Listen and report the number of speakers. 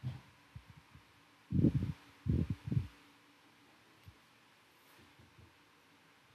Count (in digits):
0